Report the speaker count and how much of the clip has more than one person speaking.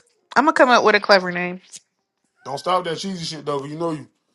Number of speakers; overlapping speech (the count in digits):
2, no overlap